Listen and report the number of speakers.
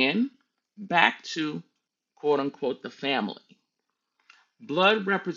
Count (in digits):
1